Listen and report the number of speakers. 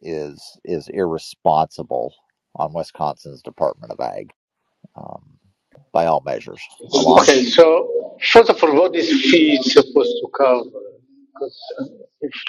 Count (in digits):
2